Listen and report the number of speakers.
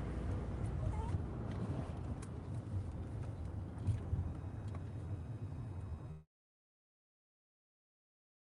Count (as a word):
zero